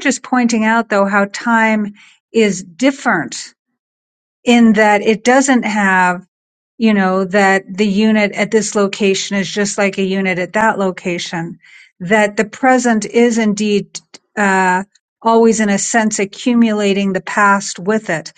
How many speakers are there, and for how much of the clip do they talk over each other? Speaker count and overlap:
1, no overlap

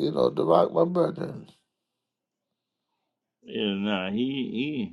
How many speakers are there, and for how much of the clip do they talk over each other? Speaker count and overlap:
2, no overlap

